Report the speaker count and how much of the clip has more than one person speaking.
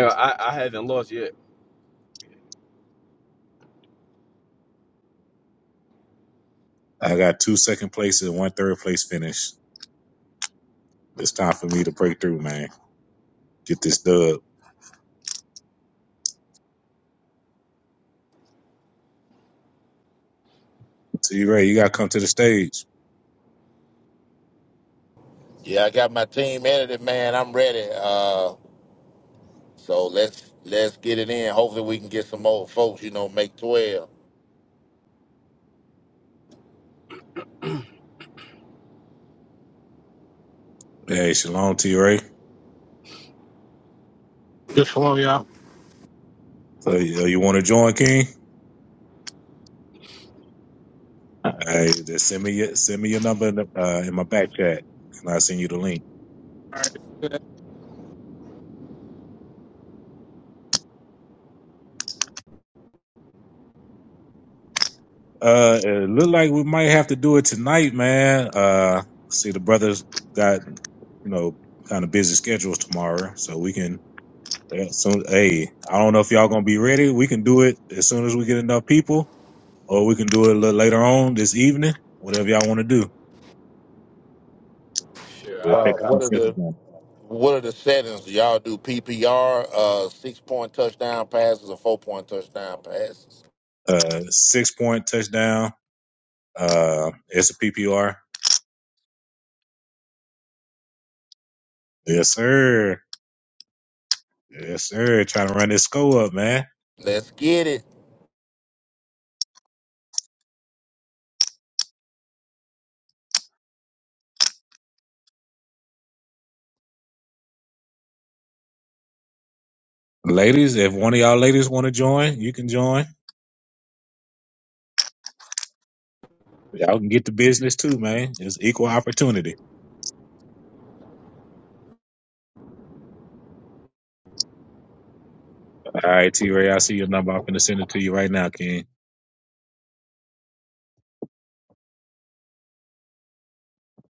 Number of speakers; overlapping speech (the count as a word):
four, about 1%